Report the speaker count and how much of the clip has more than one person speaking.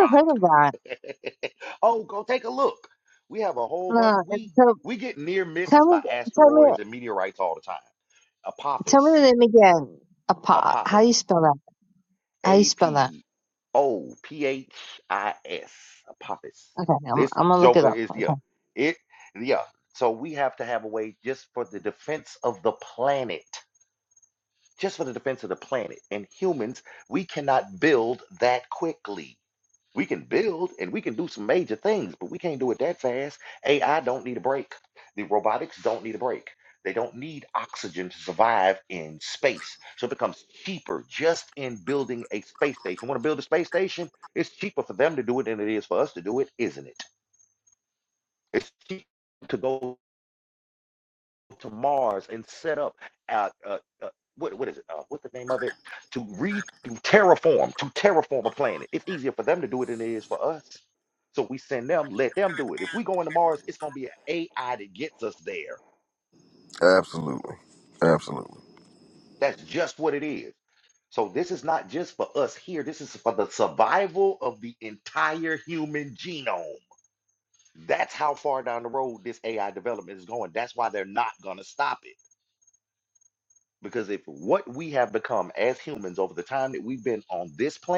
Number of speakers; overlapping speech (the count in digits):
3, about 5%